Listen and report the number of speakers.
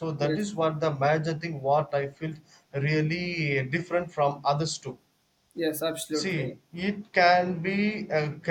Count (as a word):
two